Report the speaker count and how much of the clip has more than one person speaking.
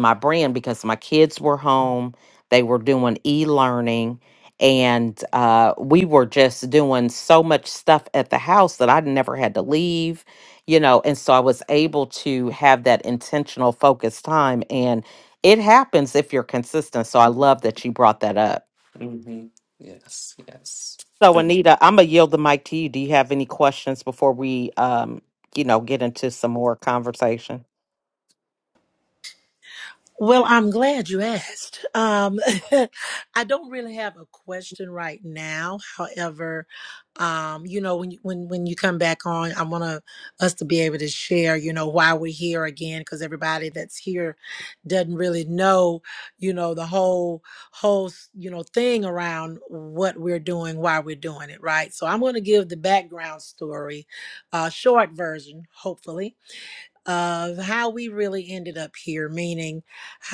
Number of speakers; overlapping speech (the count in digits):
3, about 1%